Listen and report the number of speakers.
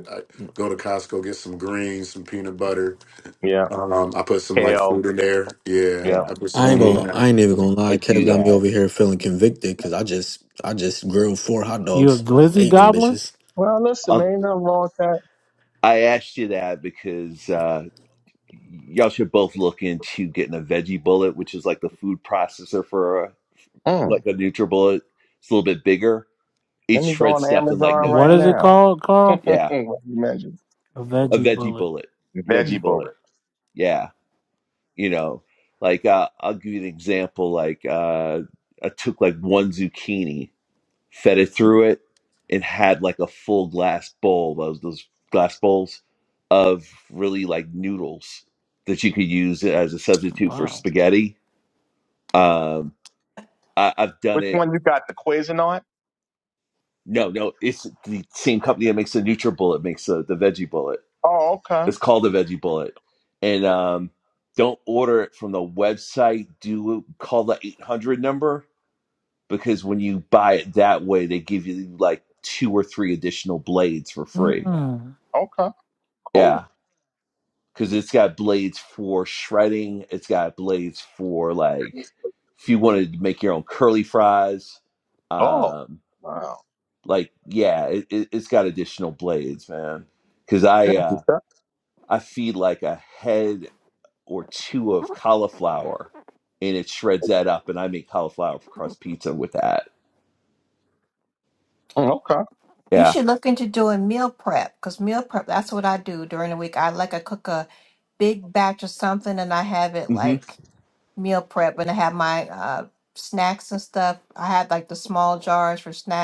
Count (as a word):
six